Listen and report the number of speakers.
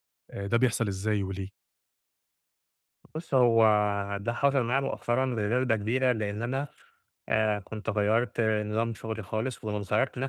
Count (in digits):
2